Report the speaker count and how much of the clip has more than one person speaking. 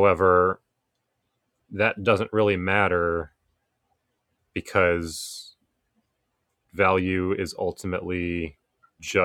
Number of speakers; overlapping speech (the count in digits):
1, no overlap